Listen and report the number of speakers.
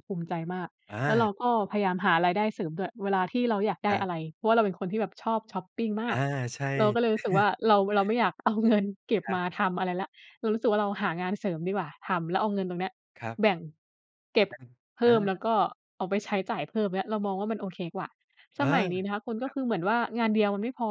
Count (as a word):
two